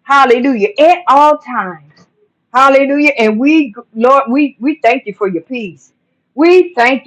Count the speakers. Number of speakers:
one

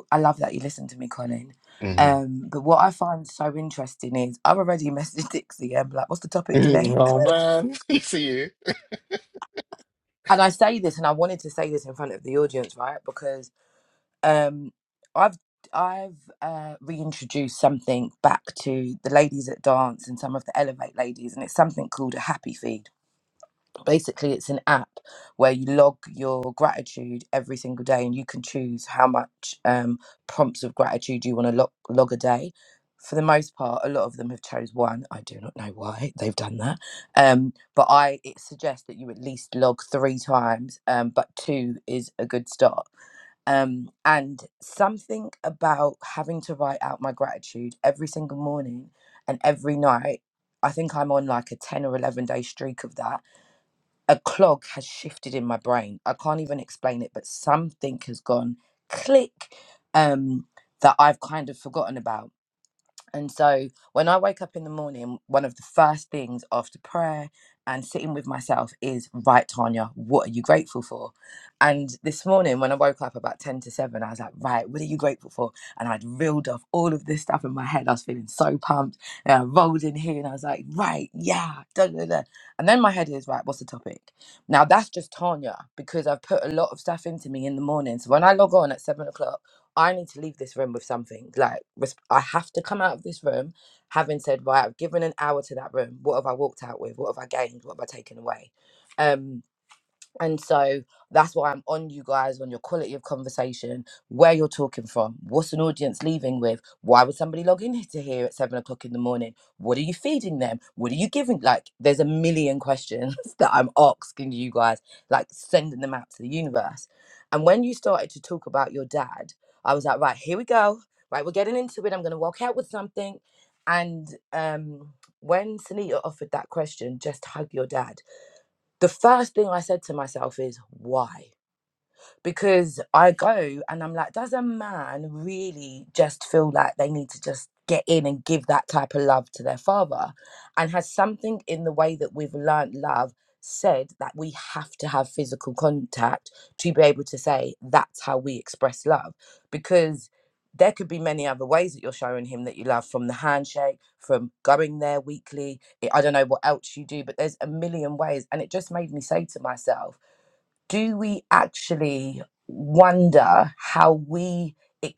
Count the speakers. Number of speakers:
two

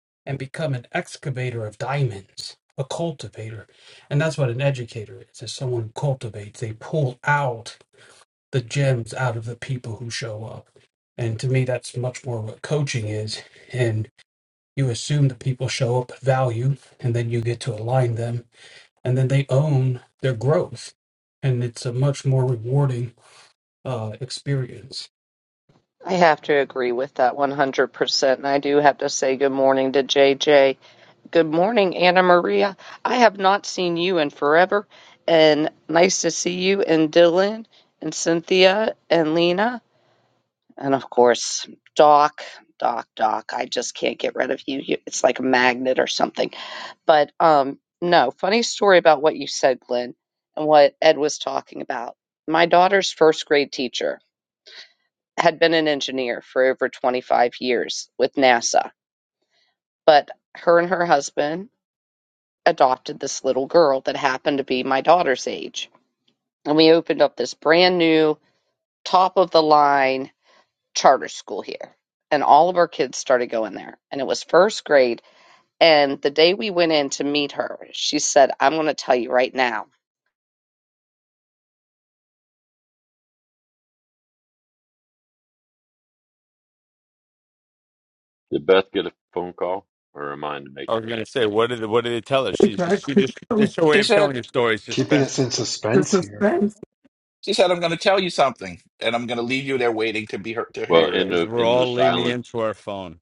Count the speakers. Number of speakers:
six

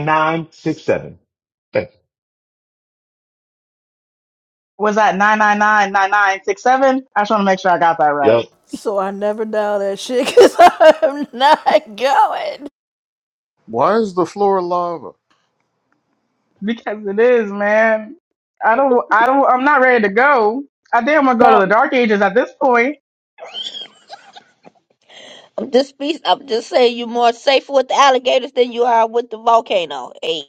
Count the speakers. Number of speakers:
five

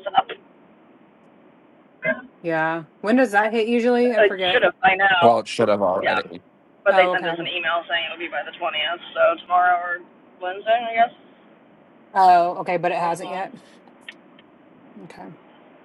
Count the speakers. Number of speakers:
three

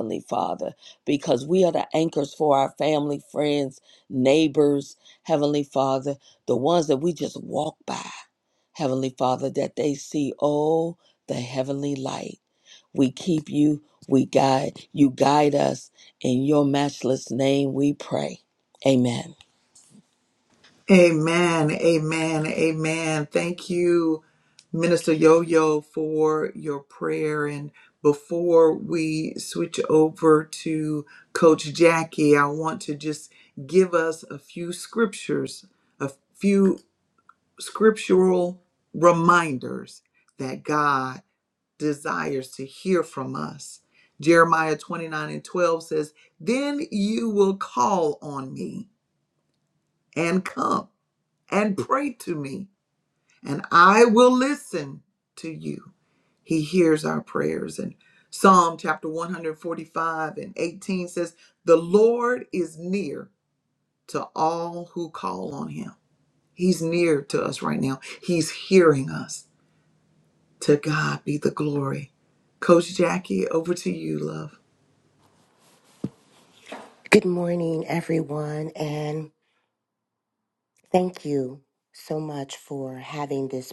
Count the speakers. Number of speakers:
three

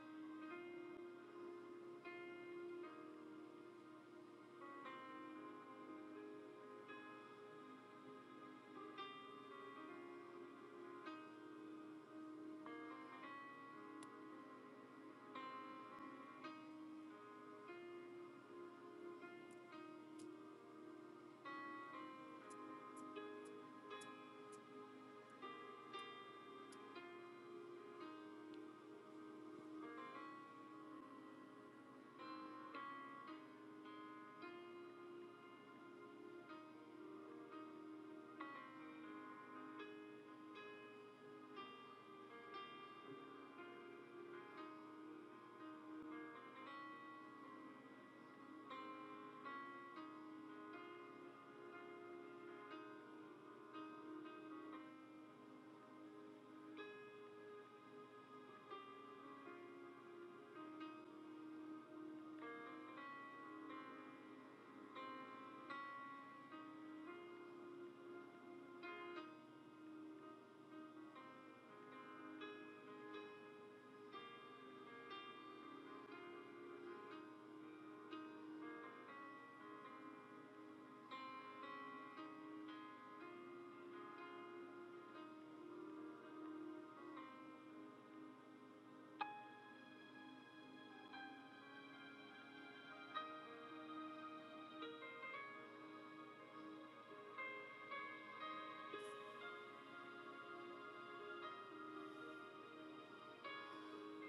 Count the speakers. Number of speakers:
zero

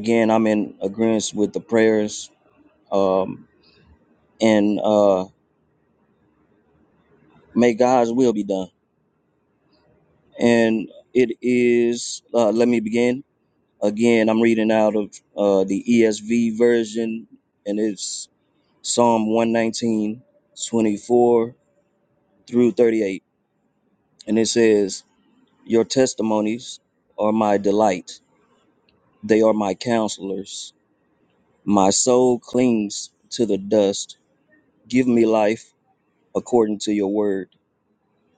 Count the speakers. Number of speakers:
one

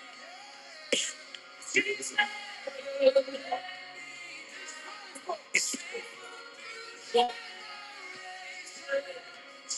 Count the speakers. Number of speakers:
zero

